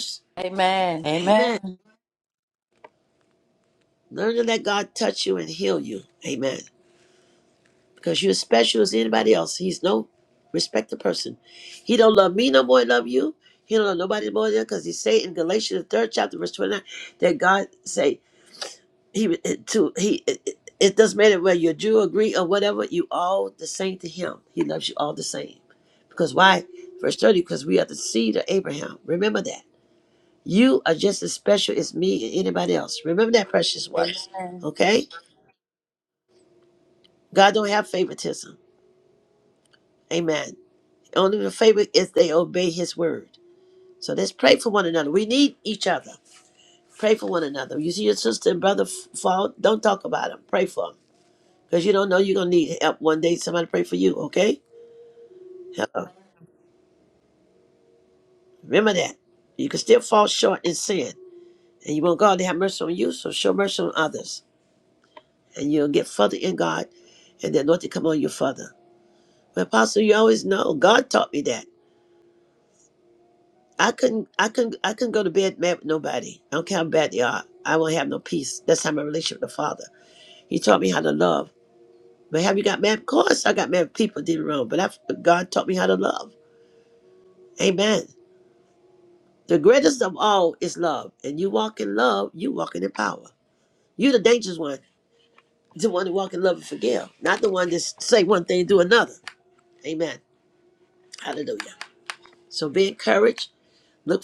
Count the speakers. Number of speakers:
2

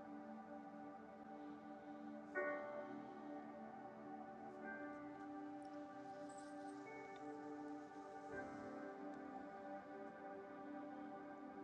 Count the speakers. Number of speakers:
0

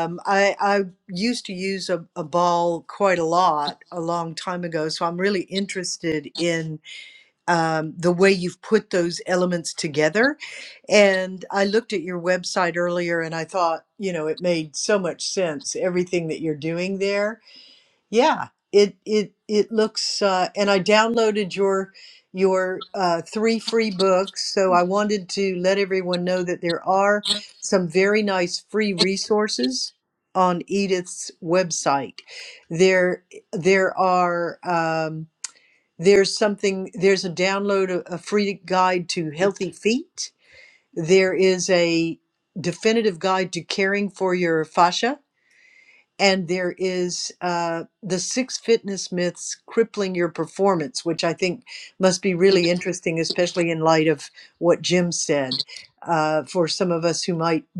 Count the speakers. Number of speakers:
1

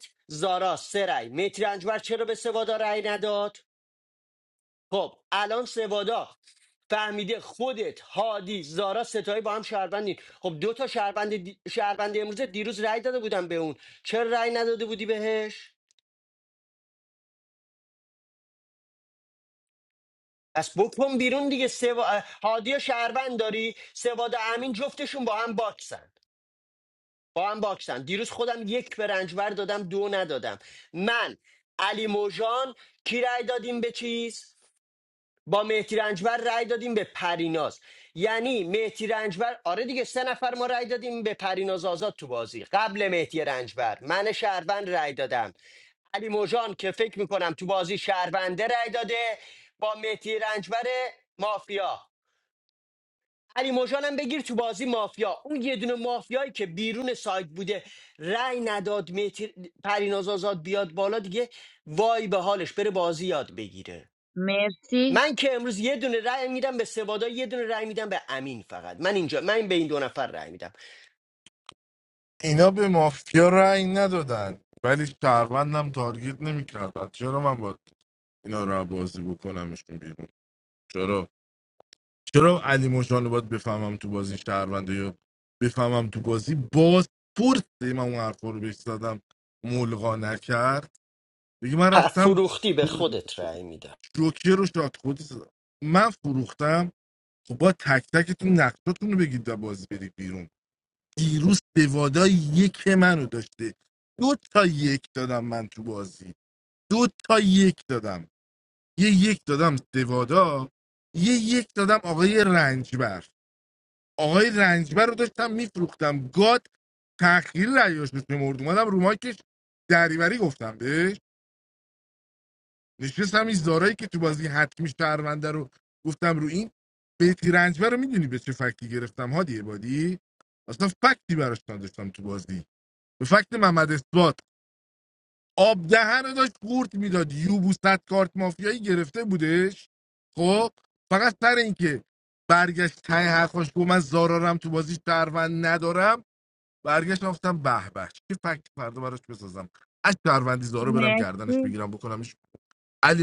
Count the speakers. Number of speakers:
3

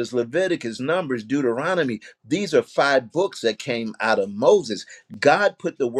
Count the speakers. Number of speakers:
1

